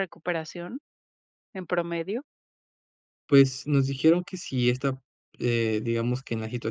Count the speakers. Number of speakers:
two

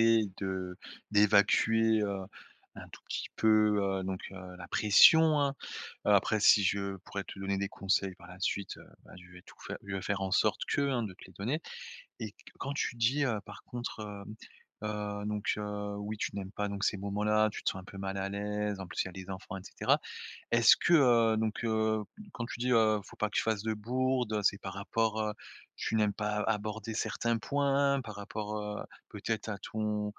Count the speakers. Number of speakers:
one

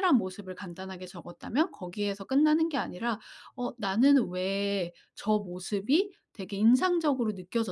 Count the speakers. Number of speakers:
one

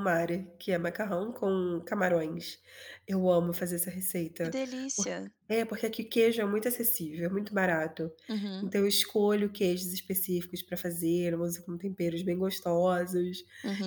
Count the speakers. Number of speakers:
two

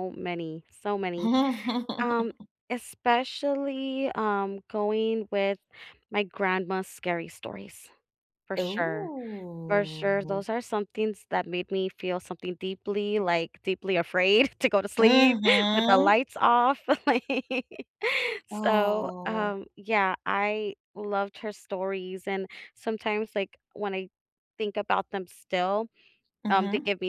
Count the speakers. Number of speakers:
two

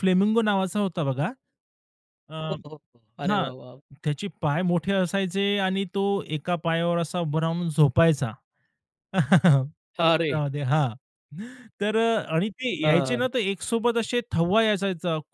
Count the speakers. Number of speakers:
two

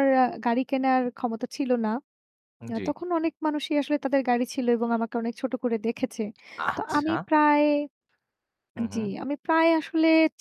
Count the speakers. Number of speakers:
two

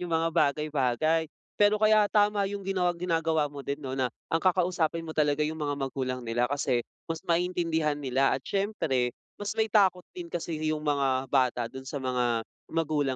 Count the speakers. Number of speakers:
one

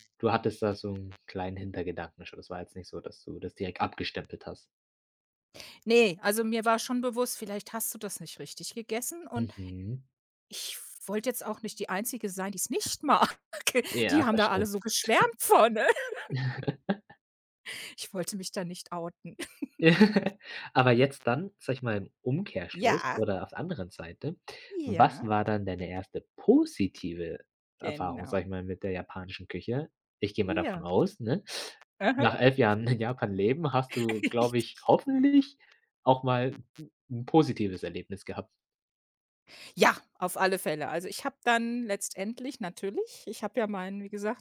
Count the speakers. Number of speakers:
two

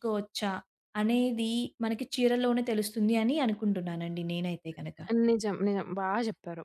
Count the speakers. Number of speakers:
two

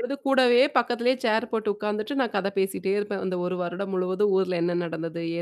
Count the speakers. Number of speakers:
one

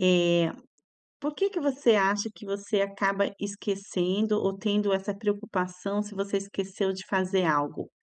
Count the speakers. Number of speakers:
one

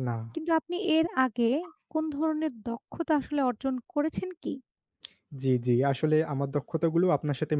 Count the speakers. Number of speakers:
two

